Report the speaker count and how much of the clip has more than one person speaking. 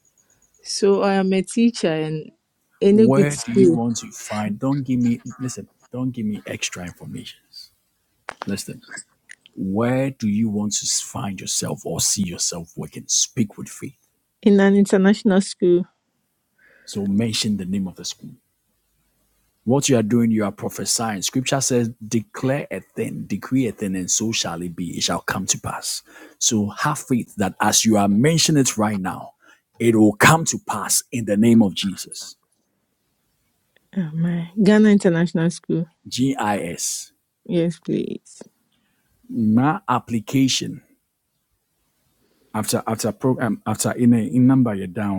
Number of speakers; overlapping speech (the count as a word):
two, about 2%